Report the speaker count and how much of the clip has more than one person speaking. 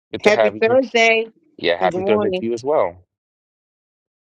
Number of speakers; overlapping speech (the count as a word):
two, about 27%